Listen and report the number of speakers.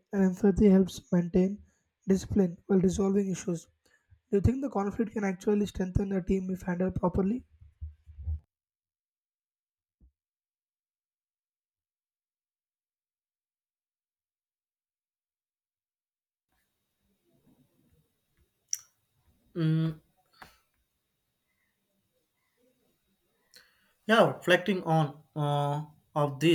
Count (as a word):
two